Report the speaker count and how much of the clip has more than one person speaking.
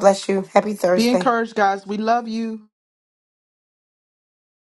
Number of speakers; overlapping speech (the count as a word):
two, about 7%